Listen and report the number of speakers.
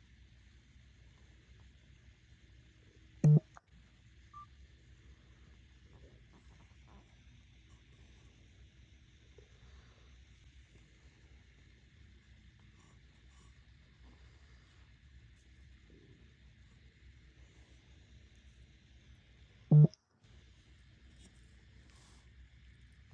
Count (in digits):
0